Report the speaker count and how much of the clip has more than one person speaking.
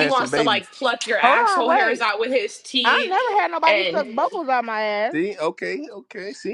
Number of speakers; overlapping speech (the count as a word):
three, about 33%